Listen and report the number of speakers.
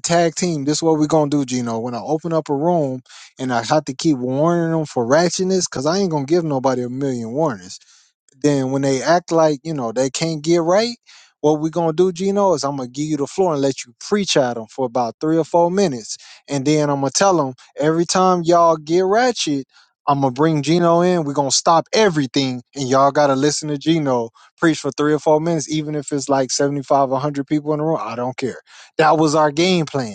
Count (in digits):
1